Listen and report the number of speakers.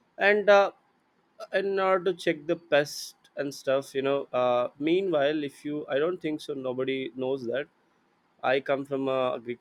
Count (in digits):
1